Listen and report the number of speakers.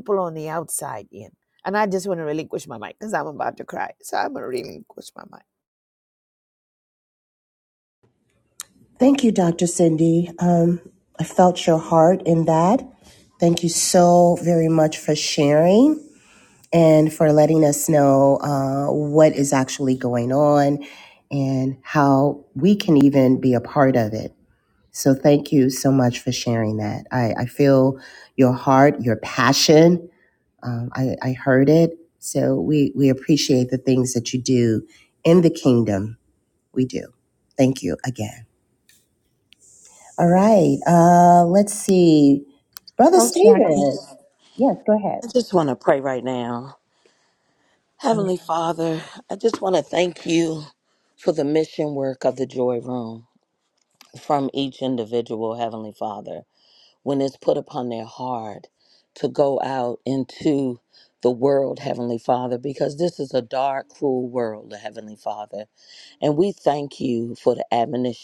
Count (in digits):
3